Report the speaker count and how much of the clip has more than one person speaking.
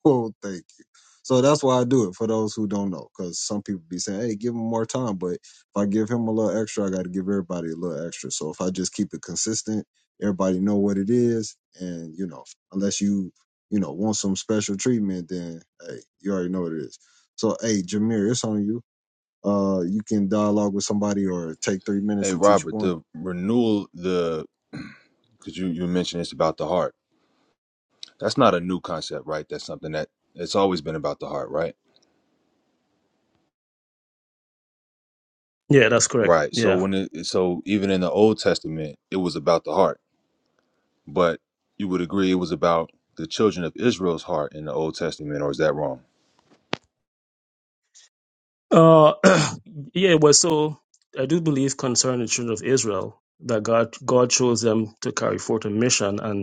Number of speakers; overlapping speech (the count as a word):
three, about 2%